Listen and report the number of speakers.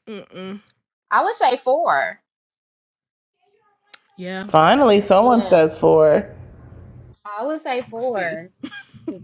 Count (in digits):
3